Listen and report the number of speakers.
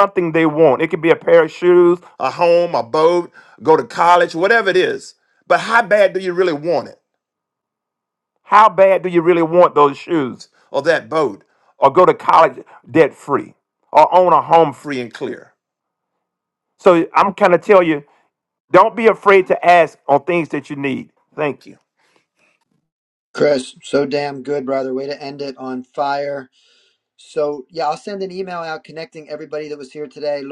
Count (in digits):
2